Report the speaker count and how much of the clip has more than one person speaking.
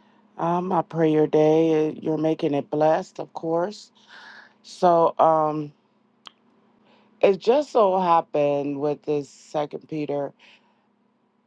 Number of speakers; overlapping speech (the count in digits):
1, no overlap